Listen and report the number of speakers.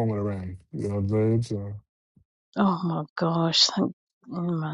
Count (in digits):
2